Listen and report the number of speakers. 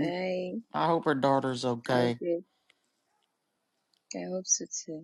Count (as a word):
two